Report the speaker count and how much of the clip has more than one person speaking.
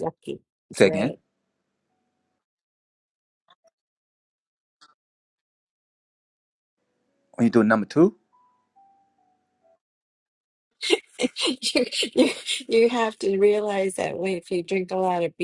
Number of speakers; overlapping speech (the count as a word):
two, about 2%